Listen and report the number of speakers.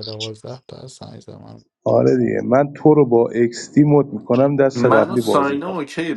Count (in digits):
3